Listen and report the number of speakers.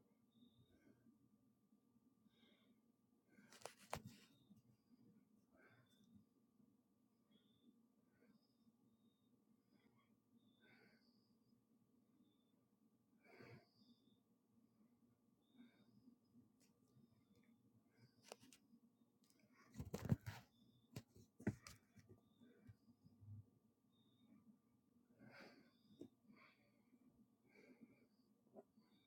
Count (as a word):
zero